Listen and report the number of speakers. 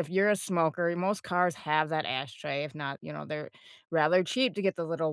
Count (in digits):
1